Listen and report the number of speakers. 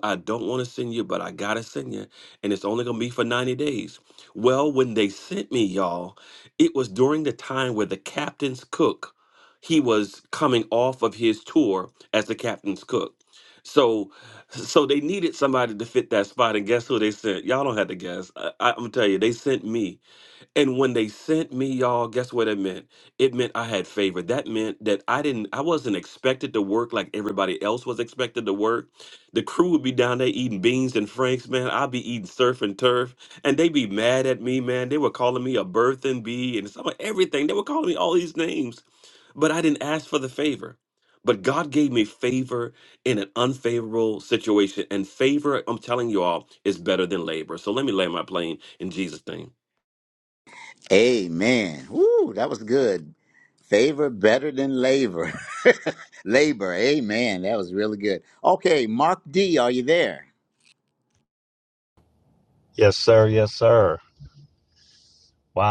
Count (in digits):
3